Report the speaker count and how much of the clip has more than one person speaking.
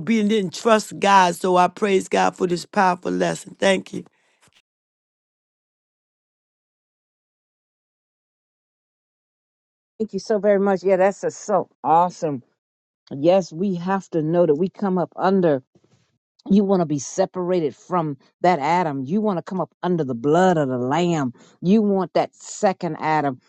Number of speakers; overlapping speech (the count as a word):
two, no overlap